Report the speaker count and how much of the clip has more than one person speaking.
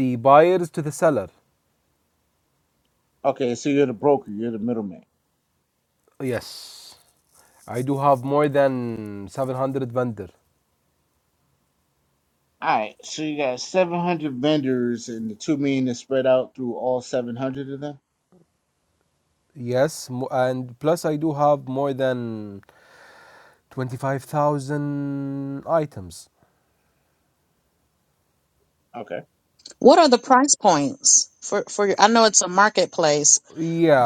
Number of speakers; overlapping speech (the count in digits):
3, under 1%